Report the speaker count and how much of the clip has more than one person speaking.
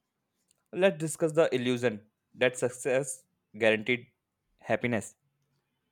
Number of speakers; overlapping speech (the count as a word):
one, no overlap